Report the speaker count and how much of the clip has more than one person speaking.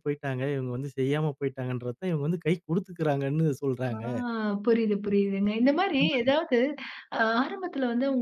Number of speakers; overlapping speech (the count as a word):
two, about 5%